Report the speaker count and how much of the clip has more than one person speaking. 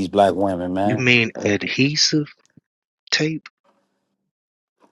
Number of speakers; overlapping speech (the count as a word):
two, about 4%